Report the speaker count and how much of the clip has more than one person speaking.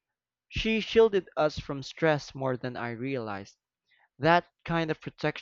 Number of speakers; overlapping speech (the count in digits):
1, no overlap